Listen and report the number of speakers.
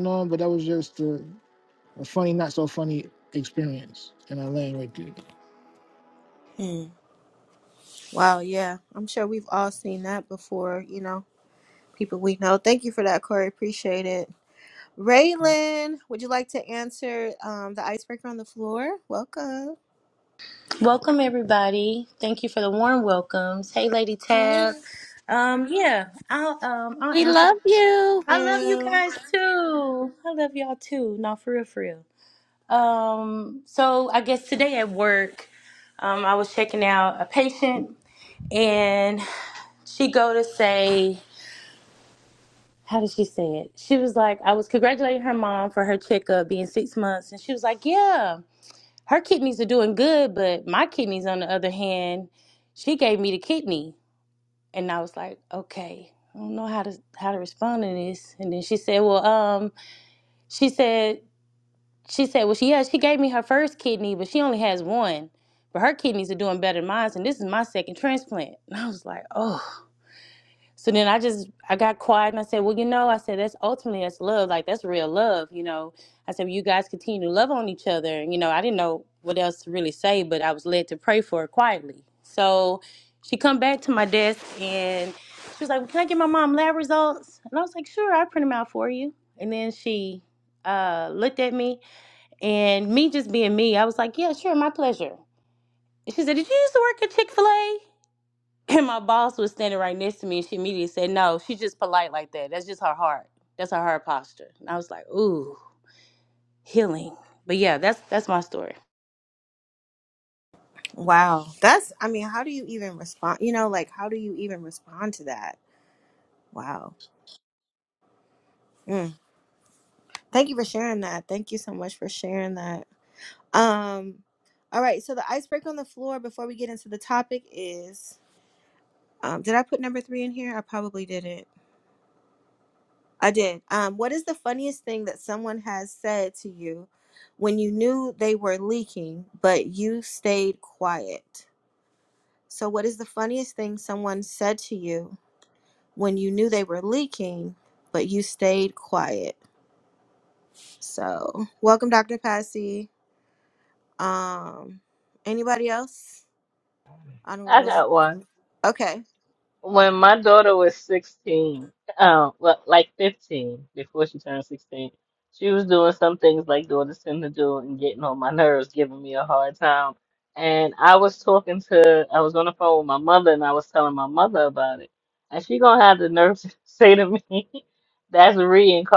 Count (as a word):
five